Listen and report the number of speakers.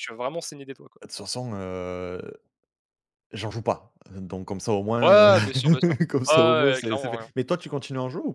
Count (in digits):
2